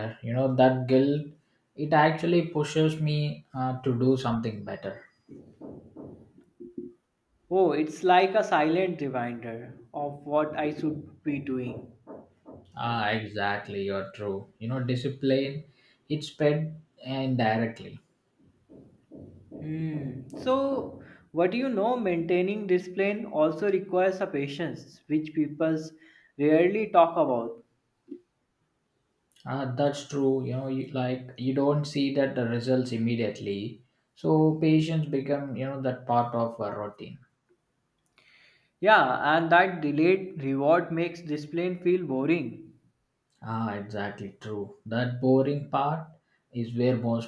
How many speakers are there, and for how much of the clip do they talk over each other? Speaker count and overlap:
2, no overlap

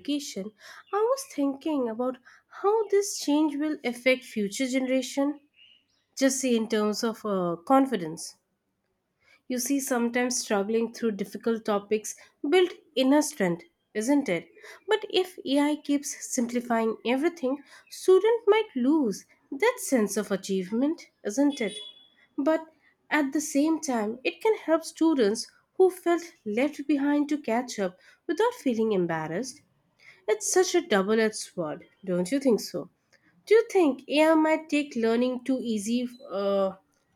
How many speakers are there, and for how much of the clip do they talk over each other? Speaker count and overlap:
1, no overlap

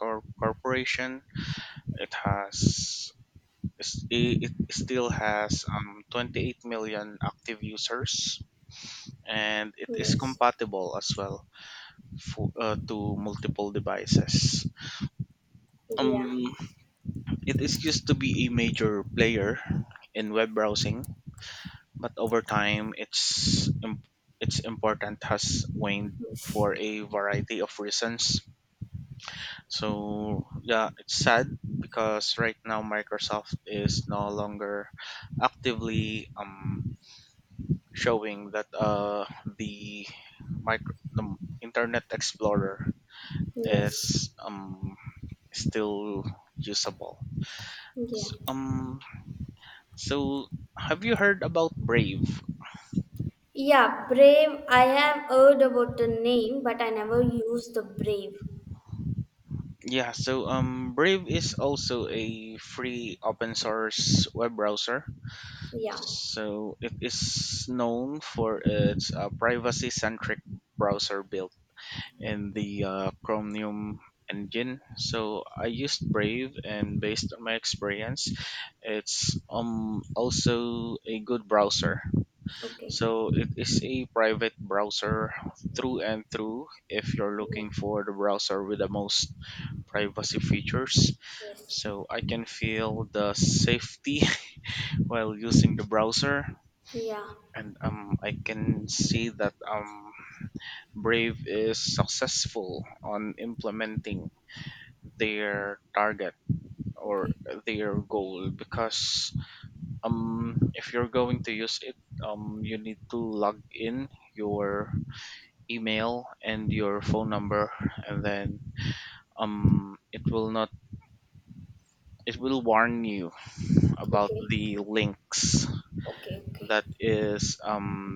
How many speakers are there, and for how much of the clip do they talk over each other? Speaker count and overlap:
2, about 2%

